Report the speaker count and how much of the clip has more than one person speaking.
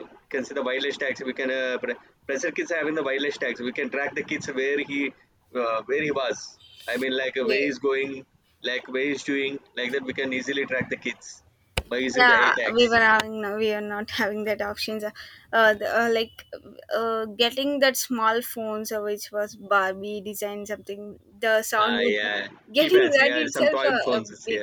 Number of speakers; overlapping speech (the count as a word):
two, about 14%